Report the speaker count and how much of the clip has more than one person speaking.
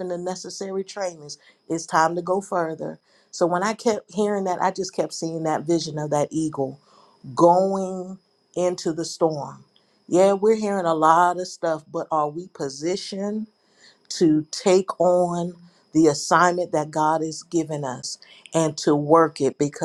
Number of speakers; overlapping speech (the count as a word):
one, no overlap